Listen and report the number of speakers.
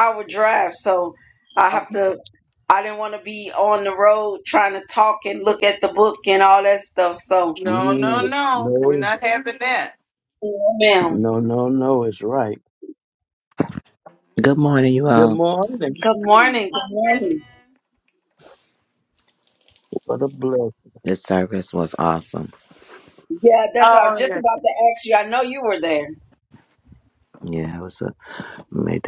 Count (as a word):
four